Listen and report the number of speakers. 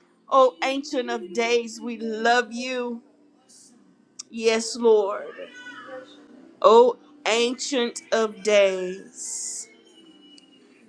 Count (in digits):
1